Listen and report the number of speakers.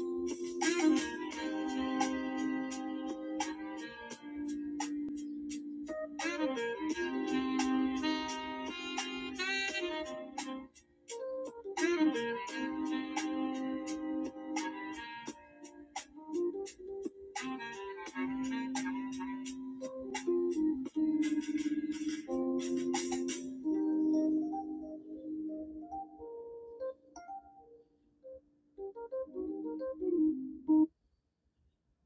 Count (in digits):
0